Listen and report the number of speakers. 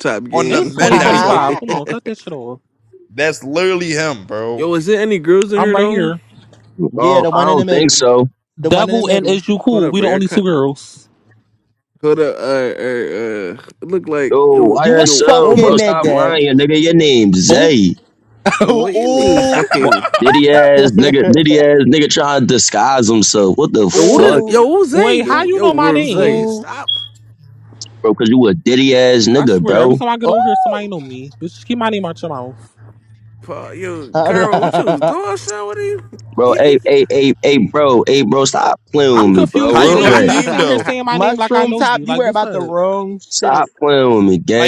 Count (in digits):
5